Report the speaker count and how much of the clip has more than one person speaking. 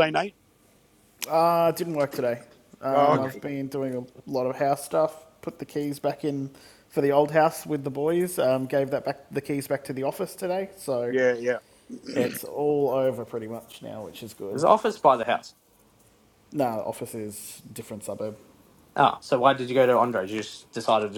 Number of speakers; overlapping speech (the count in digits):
3, about 3%